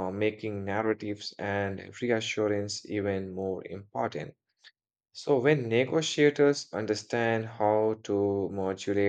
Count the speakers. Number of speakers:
1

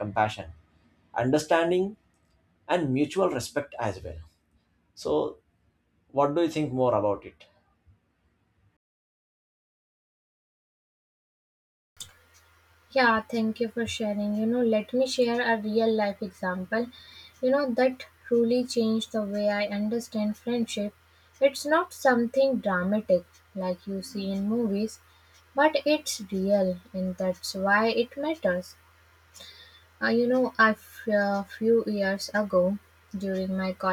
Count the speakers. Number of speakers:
2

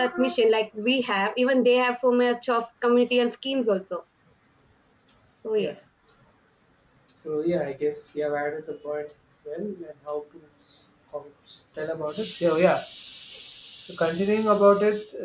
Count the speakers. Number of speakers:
2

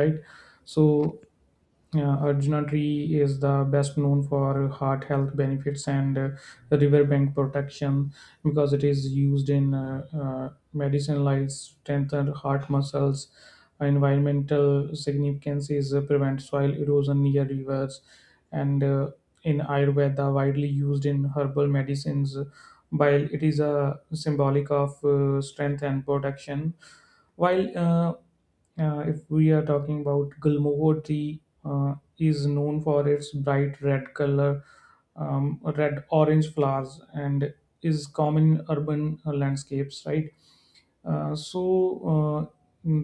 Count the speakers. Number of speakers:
1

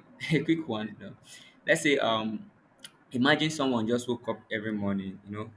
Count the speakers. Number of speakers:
1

